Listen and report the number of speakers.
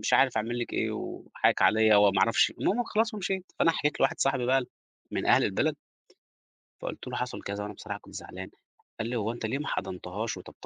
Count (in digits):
1